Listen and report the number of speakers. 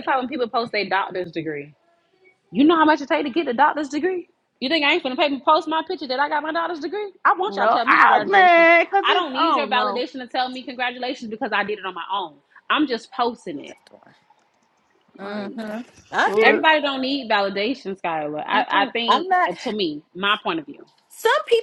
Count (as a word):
three